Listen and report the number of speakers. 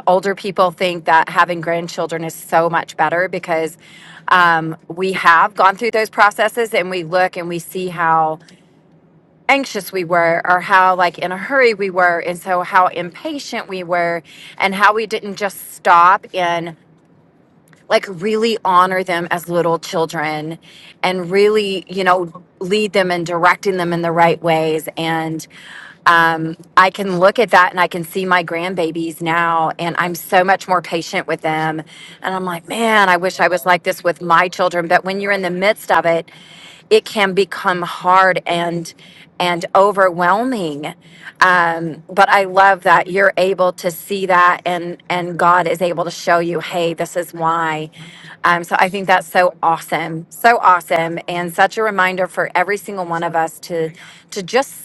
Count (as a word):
one